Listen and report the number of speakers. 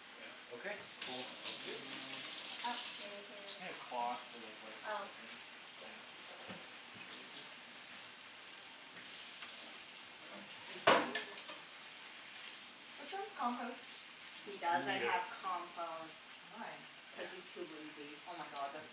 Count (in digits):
4